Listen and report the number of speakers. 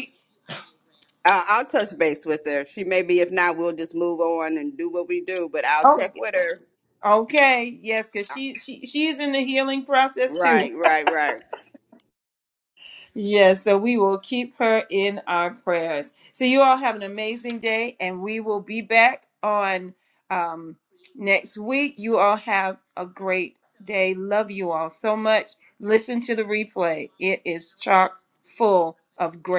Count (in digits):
2